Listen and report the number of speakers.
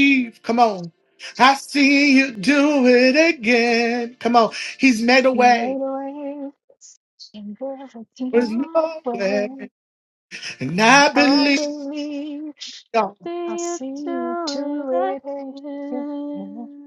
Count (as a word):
three